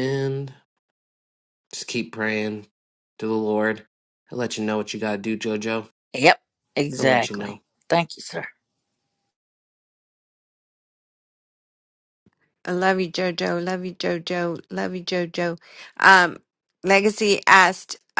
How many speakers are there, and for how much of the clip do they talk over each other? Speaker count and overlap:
3, about 3%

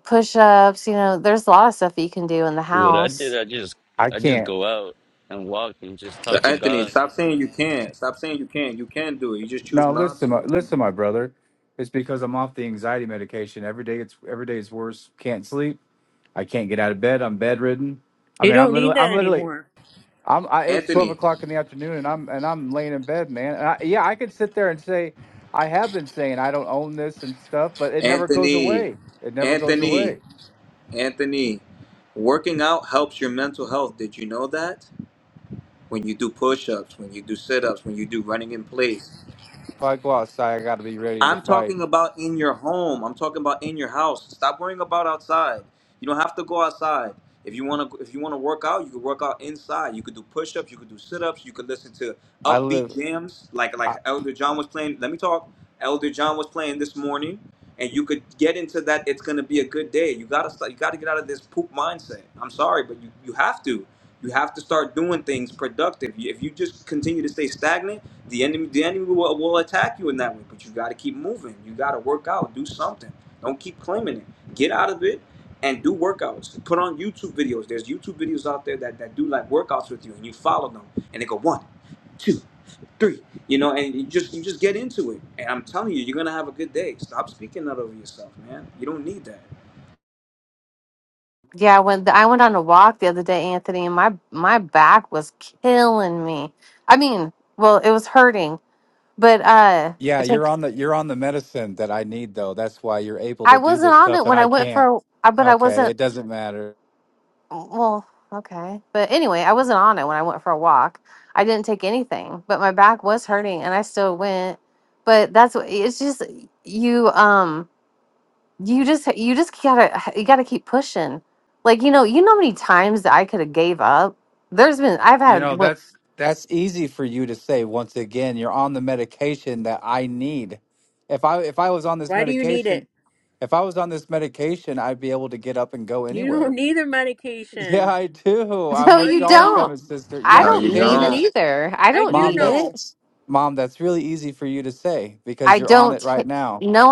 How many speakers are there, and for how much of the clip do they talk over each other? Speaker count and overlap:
5, about 10%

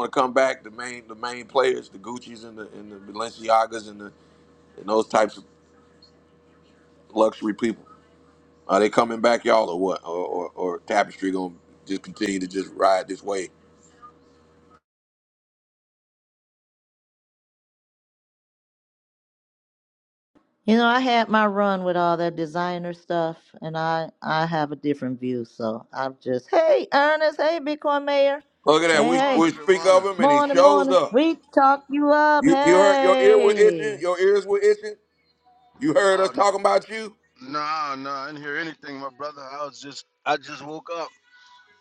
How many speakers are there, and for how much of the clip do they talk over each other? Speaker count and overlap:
3, about 9%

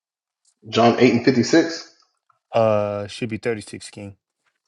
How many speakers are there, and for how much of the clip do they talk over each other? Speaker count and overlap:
2, no overlap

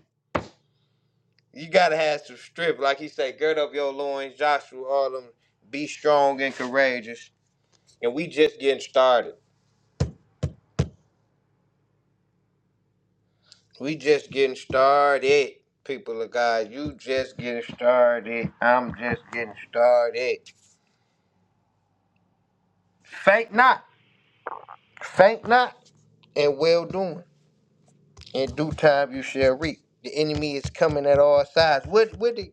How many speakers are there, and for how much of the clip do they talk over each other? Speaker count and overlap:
1, no overlap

